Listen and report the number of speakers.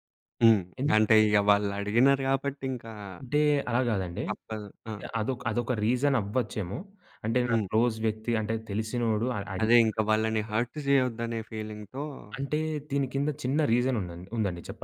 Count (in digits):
2